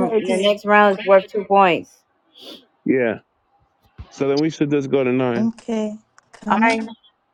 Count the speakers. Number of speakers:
three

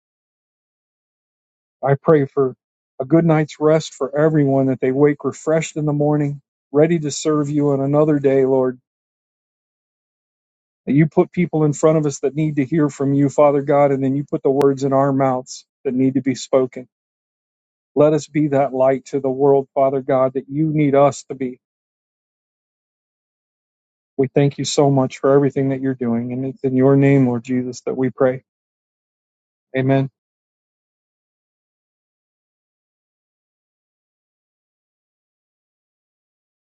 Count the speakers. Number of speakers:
one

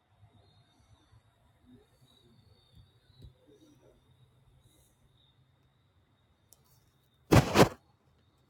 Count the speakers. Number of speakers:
zero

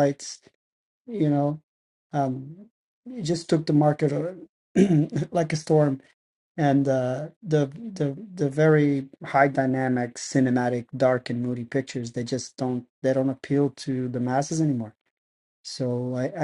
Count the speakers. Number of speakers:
one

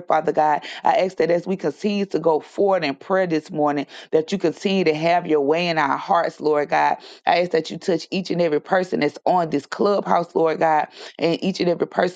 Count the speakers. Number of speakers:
one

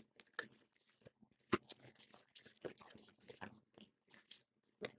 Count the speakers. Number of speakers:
zero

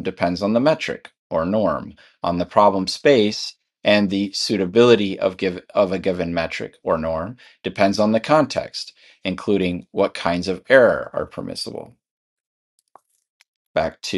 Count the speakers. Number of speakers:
one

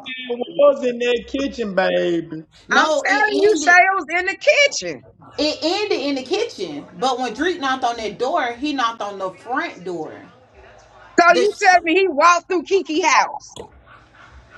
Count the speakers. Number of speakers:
three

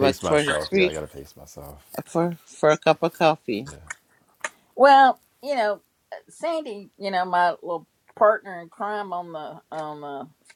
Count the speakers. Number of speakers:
three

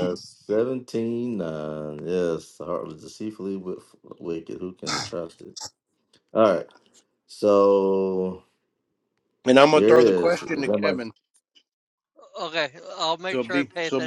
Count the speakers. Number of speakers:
three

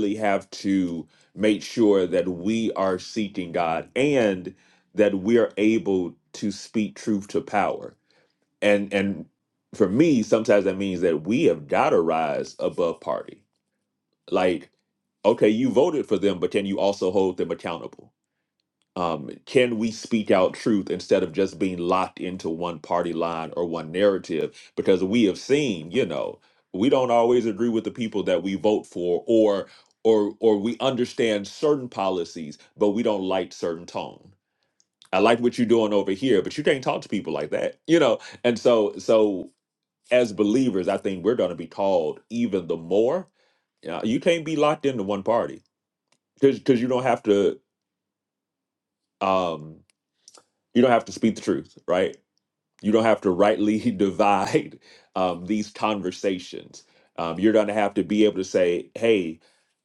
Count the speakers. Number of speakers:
one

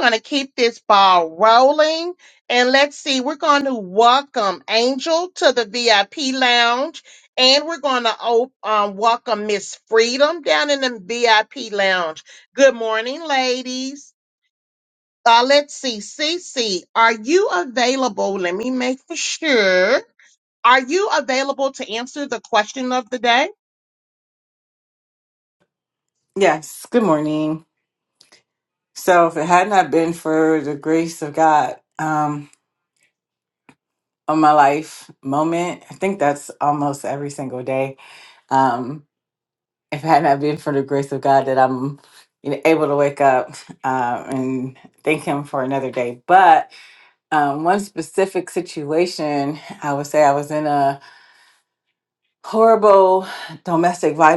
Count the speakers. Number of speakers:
two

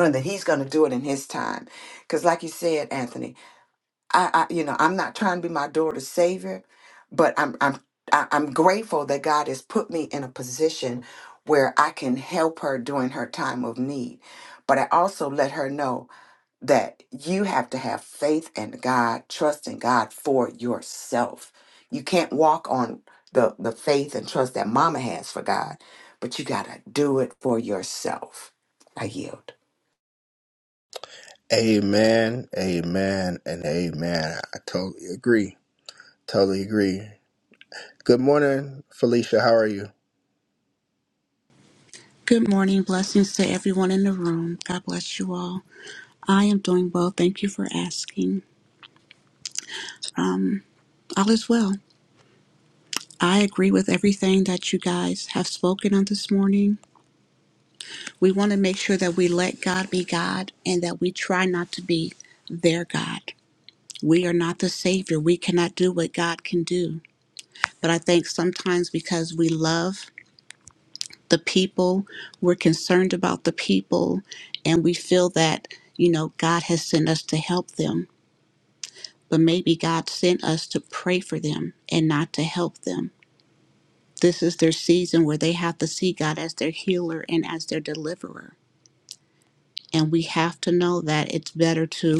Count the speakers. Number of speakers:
three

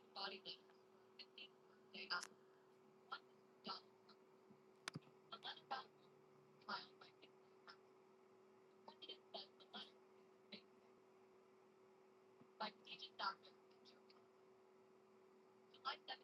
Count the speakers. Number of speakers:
zero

